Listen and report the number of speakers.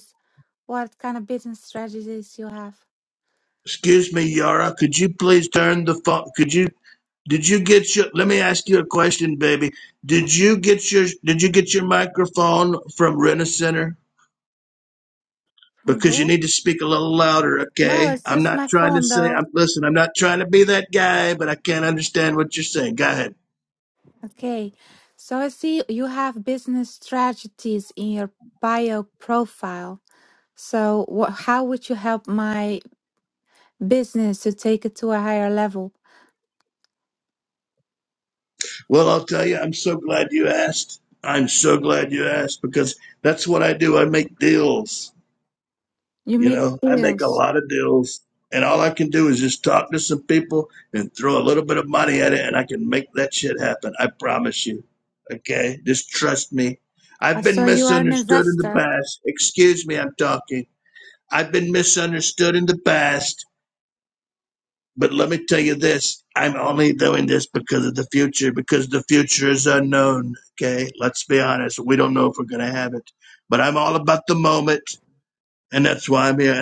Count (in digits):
2